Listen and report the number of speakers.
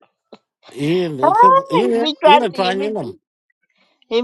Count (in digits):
2